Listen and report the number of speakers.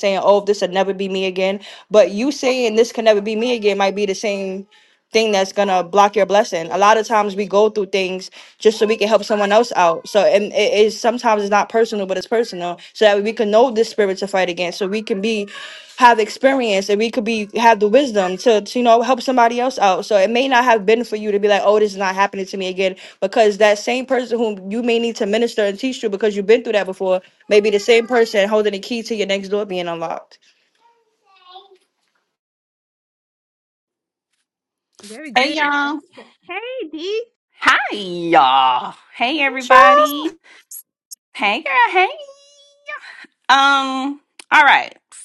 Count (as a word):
three